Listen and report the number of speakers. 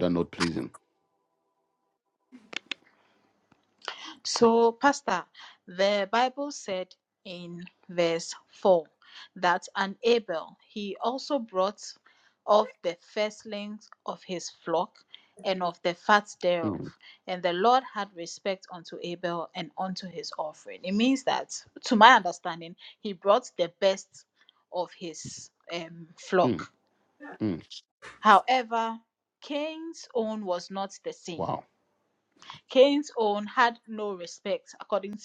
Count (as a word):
two